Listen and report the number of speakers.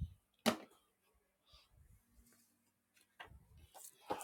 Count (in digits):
0